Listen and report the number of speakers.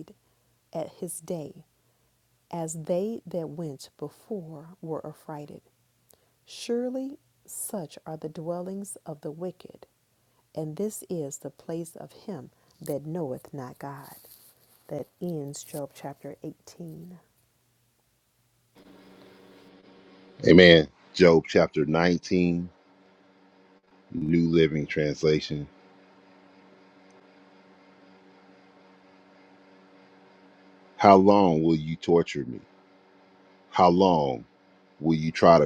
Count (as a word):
two